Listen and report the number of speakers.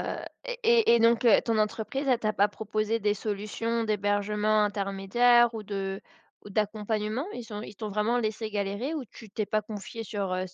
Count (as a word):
one